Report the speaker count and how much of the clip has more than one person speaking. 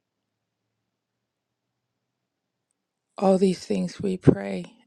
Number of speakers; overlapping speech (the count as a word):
one, no overlap